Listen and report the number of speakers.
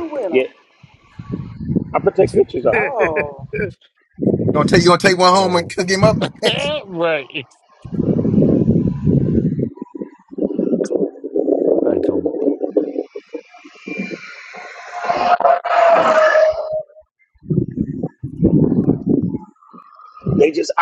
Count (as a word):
four